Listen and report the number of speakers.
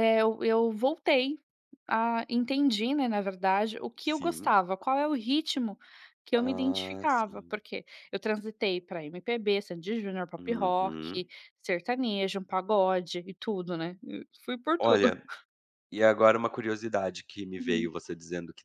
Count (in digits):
2